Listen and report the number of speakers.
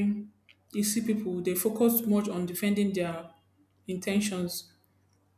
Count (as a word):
one